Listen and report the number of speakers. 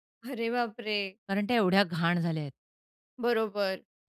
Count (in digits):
2